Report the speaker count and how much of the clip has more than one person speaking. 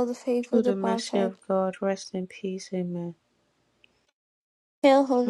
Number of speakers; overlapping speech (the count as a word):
two, about 17%